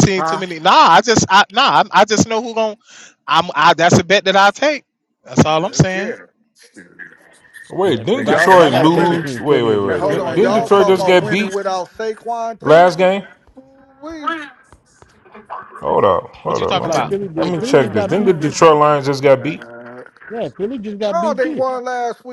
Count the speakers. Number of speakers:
four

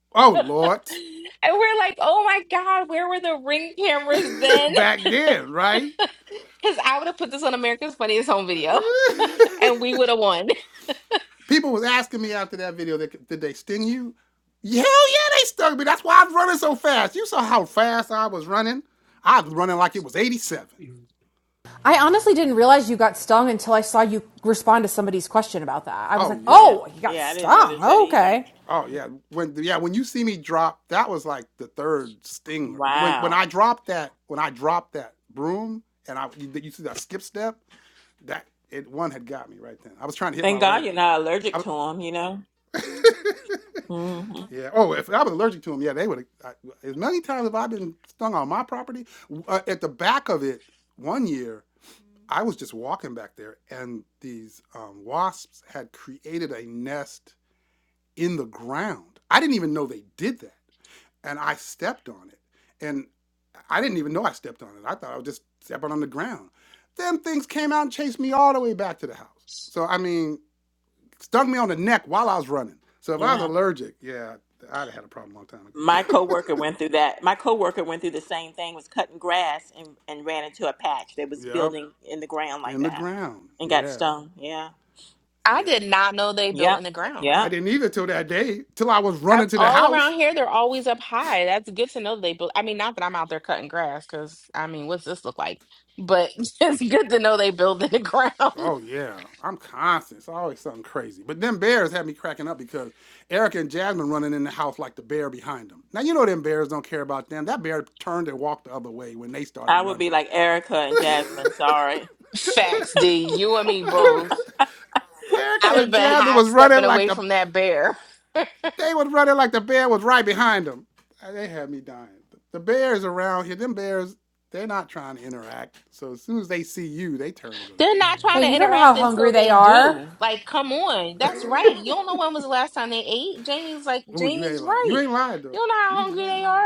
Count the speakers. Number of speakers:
four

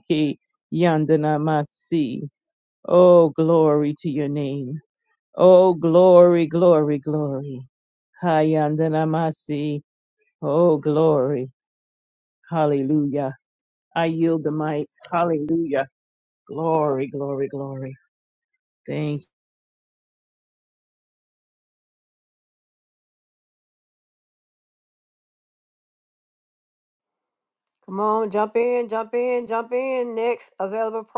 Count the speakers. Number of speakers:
two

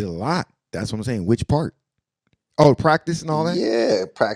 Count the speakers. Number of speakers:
two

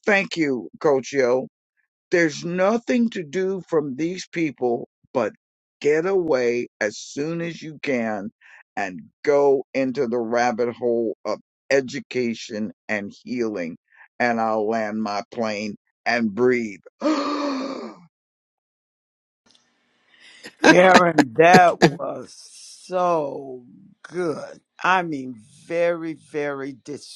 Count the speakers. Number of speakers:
two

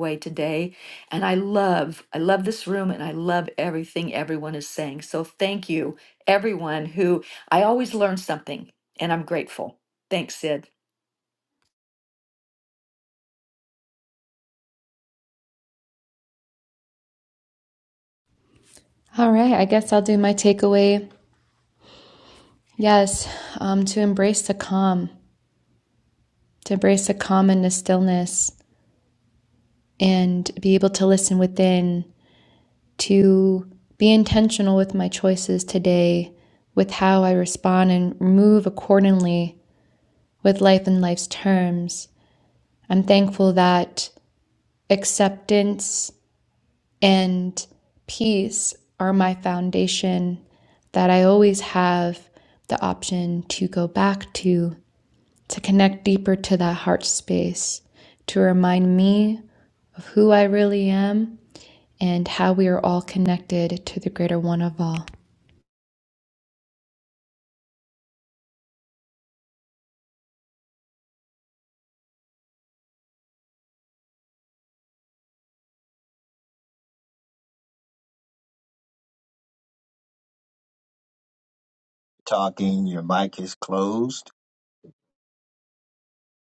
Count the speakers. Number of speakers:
three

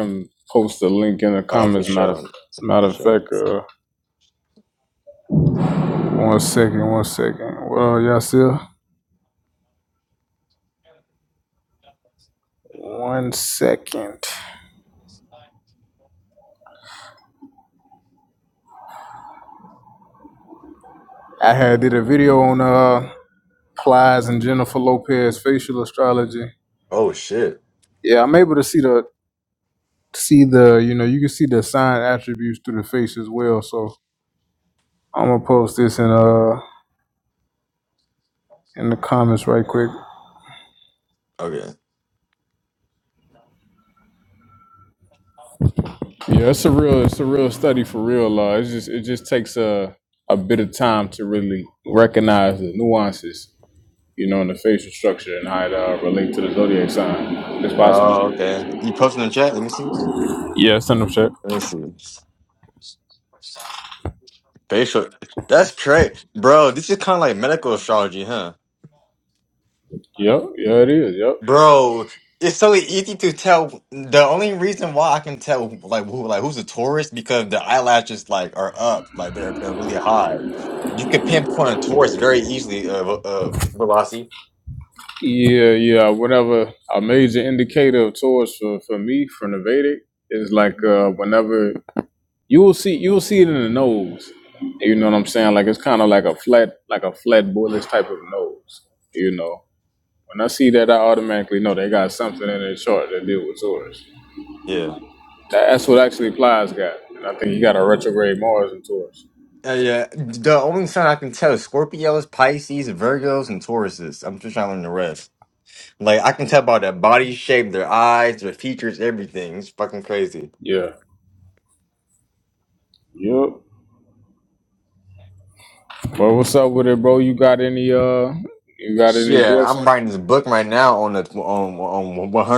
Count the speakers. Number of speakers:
two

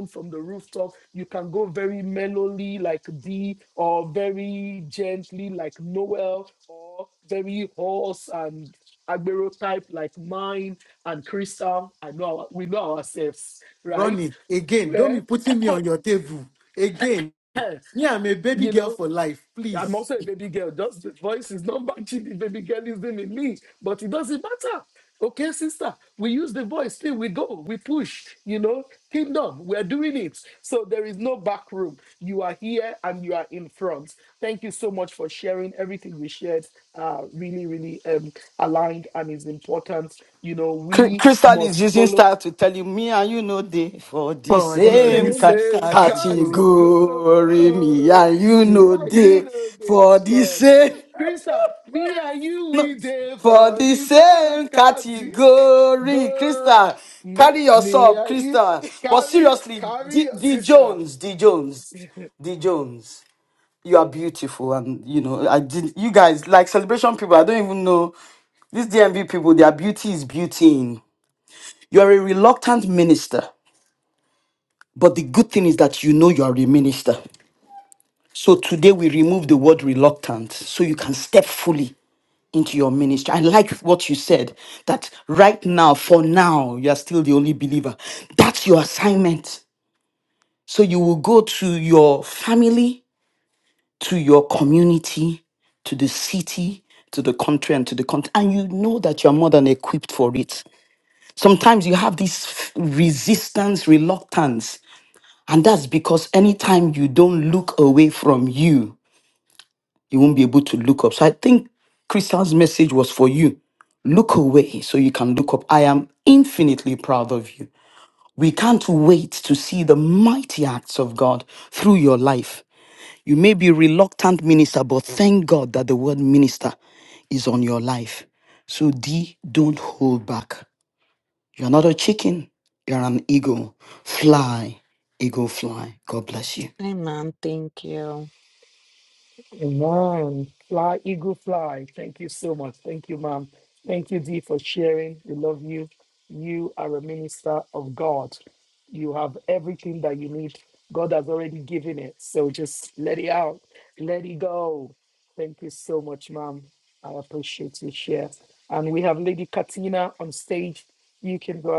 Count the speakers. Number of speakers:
four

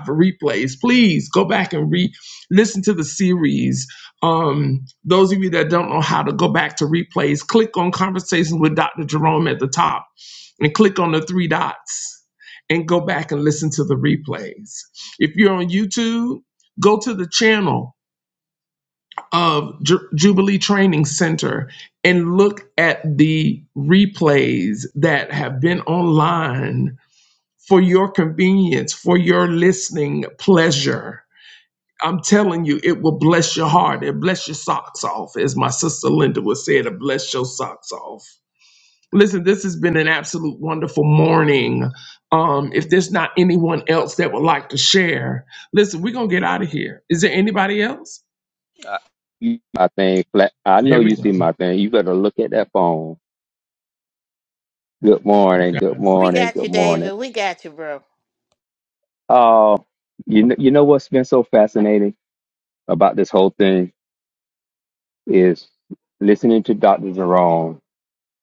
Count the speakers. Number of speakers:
three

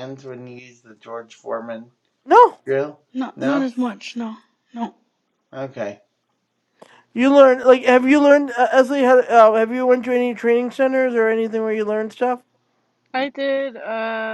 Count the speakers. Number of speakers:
four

